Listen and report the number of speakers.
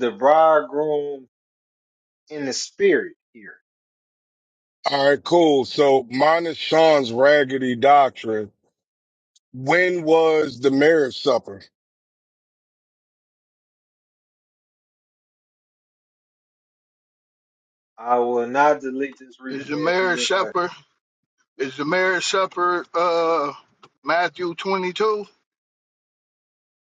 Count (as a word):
three